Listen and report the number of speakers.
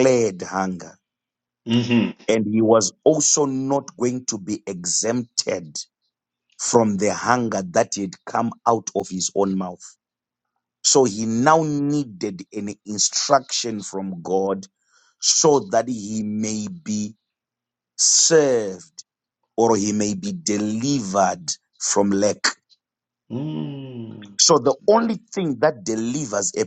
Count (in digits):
2